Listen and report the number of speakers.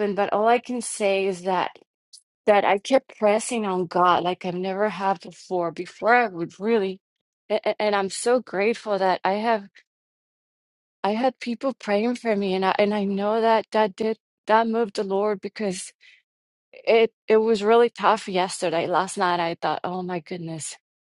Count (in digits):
1